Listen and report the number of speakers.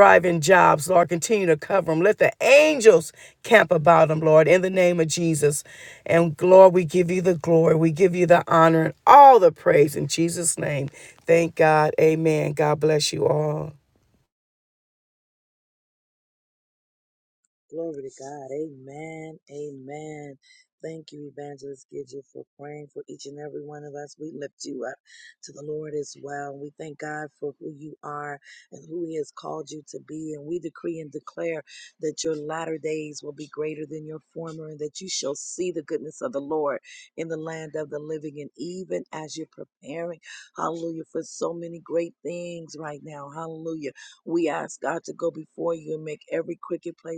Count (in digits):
2